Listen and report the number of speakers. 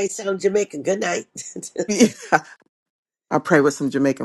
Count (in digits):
2